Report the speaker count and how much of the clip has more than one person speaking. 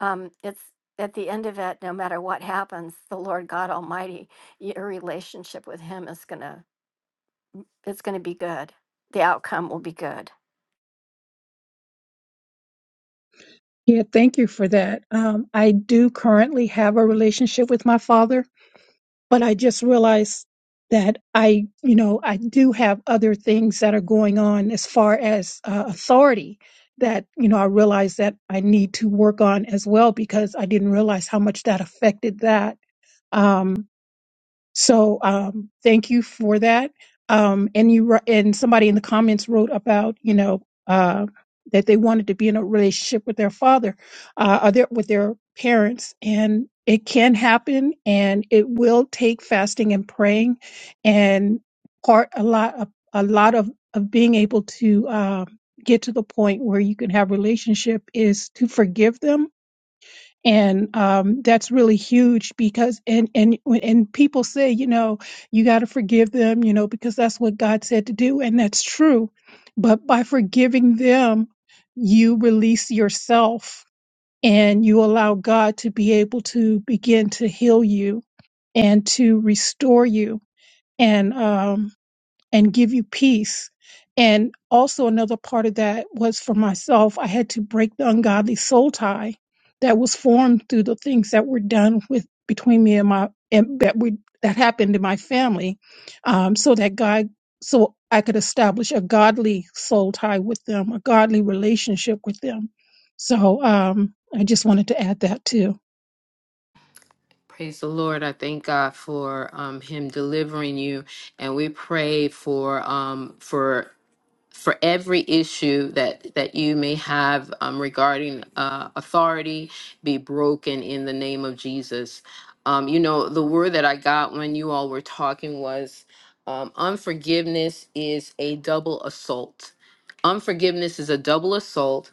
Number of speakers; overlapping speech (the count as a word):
three, no overlap